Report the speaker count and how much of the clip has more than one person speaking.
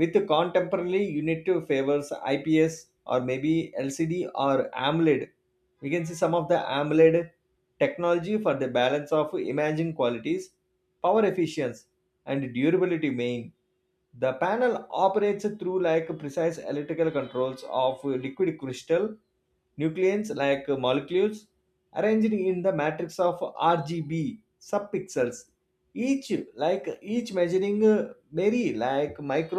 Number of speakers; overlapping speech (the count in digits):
1, no overlap